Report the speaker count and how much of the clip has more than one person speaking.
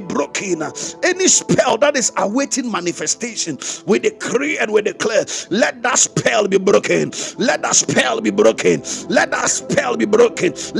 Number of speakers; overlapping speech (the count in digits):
1, no overlap